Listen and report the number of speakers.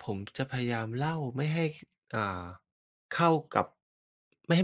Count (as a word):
one